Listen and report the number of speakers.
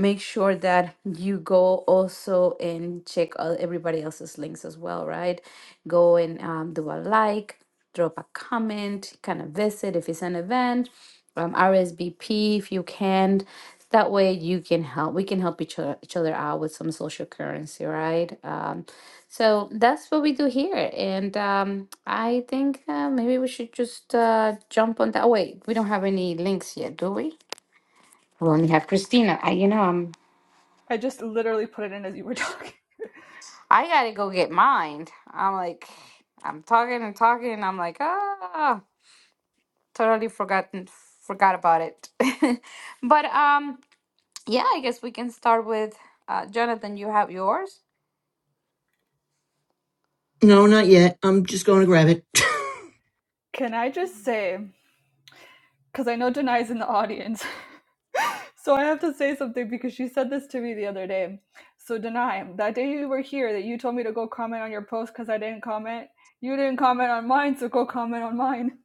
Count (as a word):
three